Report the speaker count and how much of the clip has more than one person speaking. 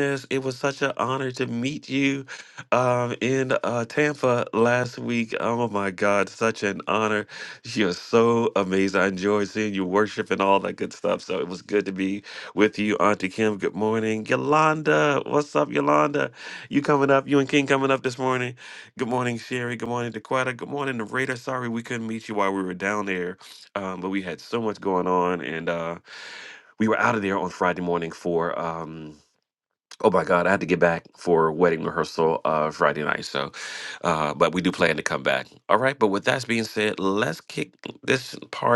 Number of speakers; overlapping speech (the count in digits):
1, no overlap